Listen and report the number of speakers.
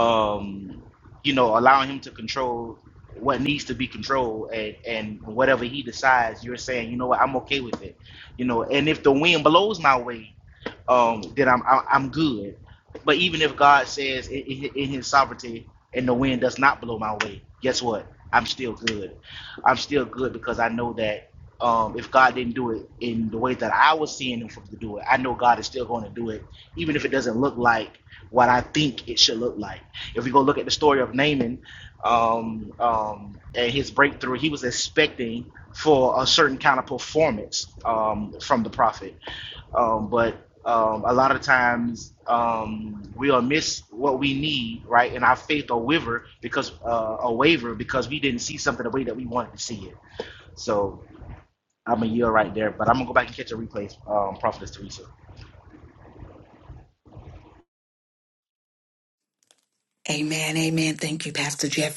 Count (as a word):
two